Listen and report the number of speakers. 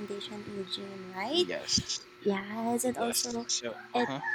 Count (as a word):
two